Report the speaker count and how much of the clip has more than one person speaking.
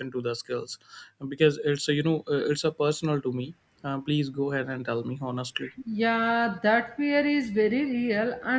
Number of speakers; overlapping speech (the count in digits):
2, no overlap